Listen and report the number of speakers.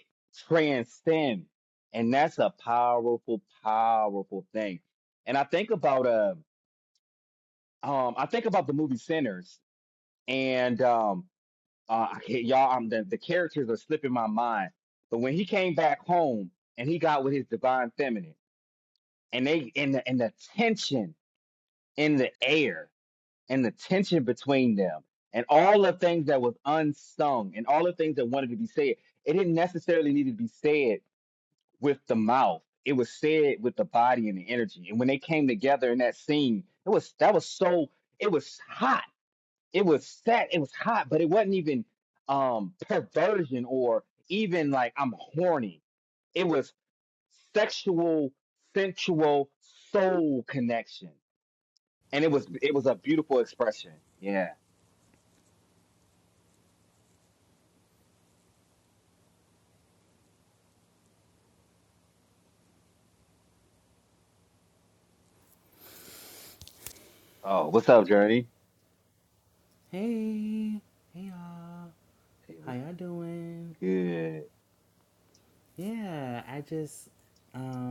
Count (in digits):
2